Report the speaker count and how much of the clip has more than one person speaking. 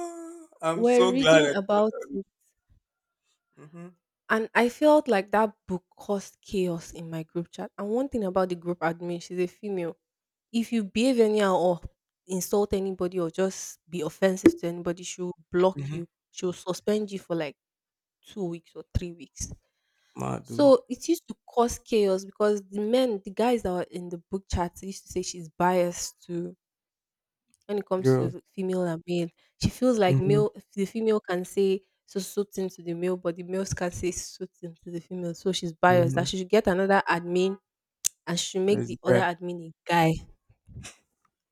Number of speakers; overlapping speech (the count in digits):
2, about 8%